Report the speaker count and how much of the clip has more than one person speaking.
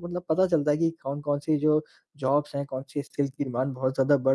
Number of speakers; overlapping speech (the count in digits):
1, no overlap